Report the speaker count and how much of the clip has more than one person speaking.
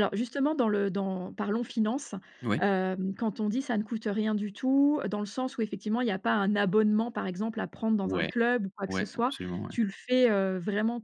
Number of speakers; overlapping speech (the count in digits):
2, about 8%